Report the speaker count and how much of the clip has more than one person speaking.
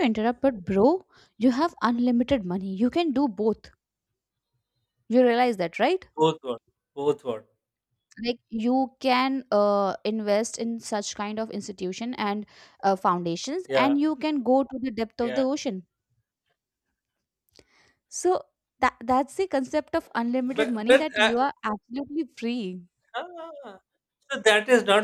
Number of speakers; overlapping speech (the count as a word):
two, about 6%